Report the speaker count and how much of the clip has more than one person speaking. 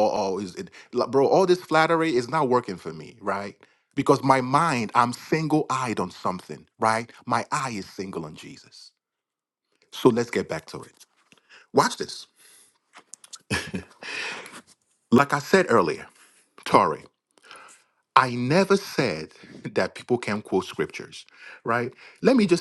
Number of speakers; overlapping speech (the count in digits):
1, no overlap